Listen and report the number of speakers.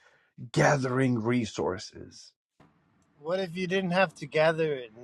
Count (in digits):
2